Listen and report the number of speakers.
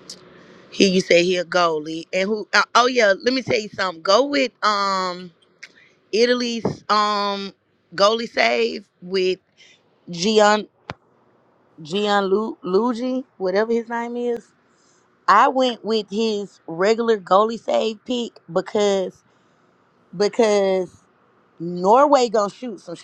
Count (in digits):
1